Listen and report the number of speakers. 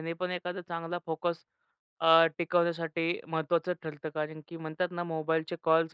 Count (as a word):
one